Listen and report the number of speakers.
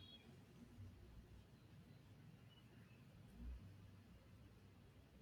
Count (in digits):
0